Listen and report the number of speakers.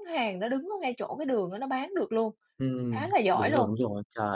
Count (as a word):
two